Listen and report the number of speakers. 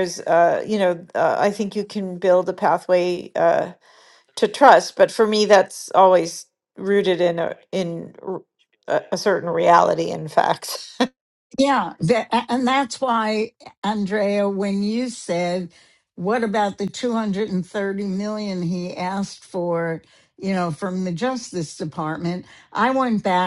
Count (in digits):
2